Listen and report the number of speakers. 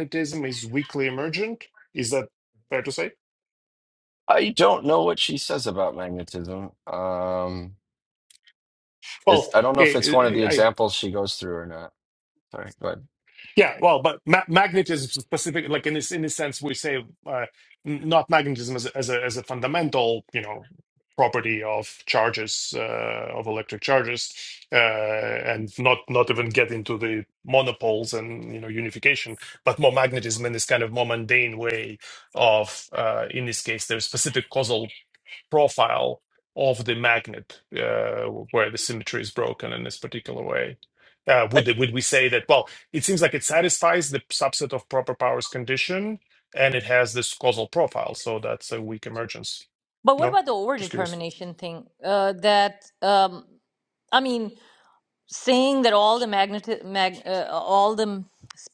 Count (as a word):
three